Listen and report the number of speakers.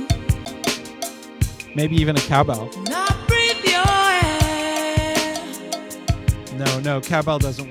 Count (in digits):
1